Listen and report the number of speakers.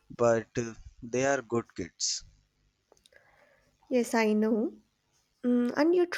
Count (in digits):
2